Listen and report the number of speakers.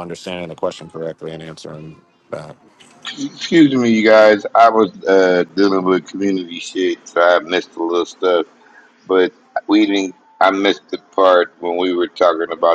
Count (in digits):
2